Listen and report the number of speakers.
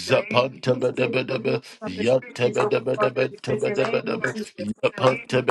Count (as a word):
two